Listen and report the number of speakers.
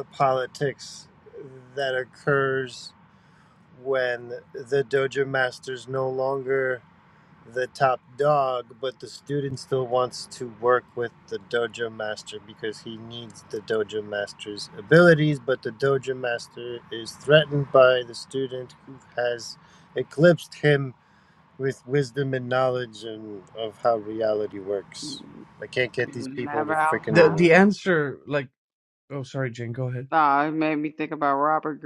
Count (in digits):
3